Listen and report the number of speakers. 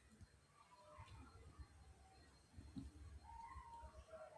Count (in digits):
0